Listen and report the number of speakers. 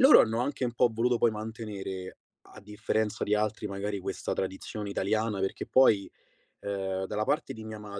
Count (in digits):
1